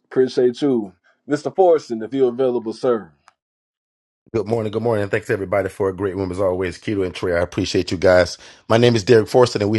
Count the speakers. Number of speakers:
2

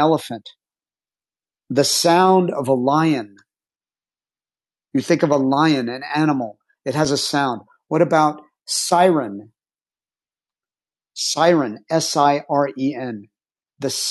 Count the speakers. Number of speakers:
1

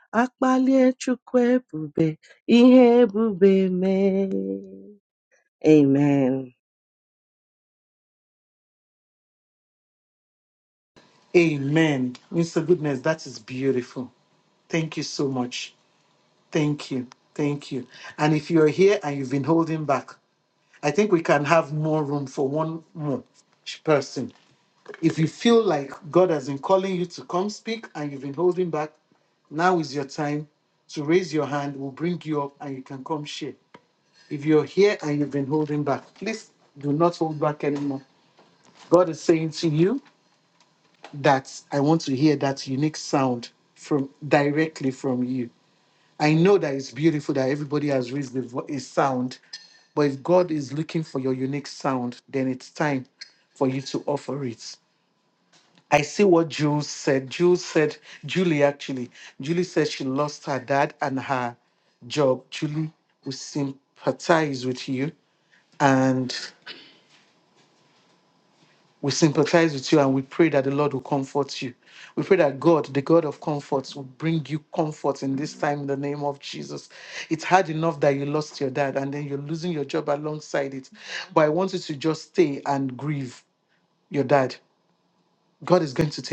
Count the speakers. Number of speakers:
2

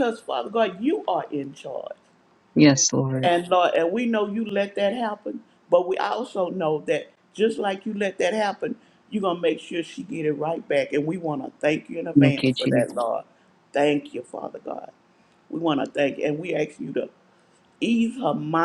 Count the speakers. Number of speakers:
2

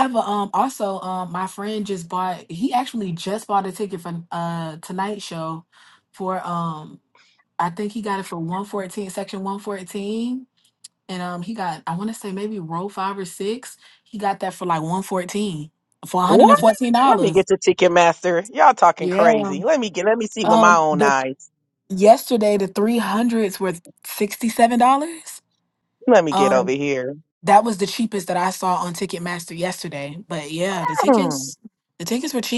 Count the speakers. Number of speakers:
2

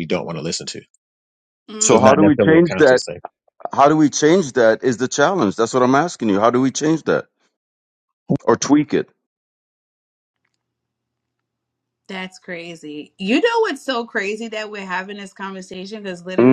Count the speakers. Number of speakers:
3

